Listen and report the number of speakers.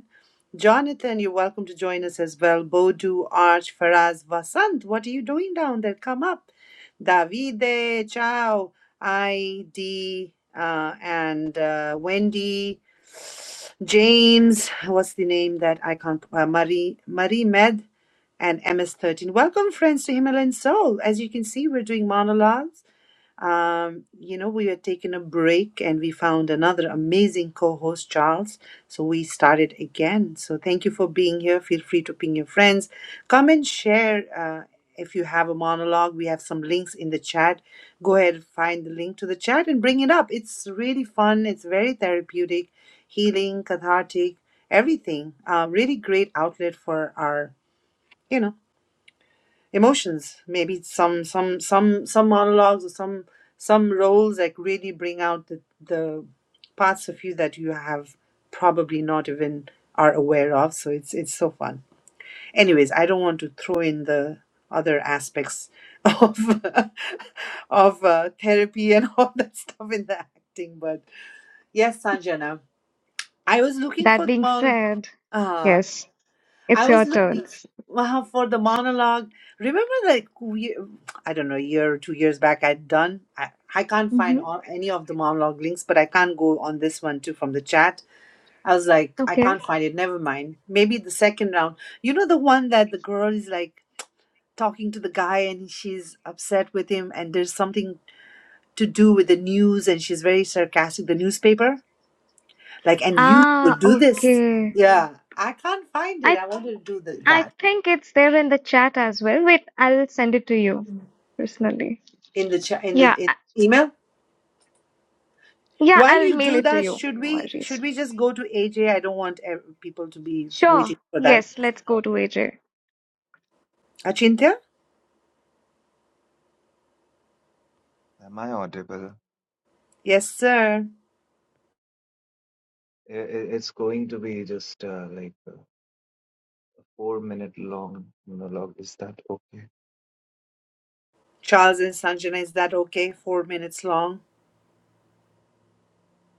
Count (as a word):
three